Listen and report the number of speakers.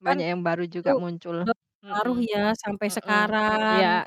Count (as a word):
two